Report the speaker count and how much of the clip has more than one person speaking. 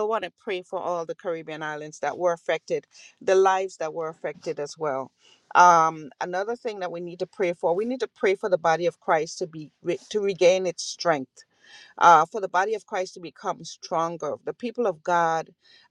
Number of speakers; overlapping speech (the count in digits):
1, no overlap